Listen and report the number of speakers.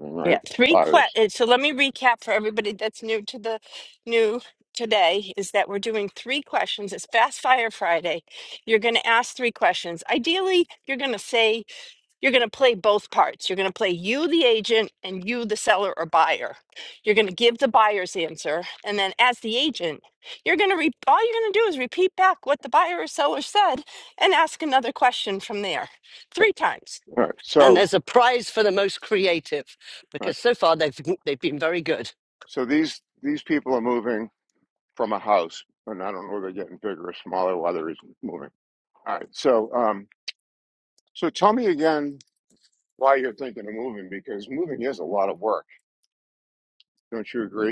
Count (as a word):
three